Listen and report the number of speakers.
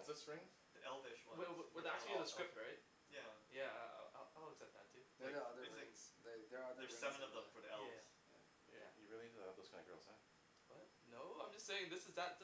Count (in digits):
4